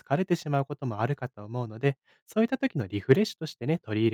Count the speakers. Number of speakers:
1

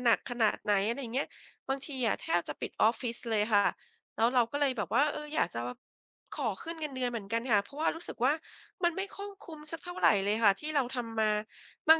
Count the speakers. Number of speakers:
1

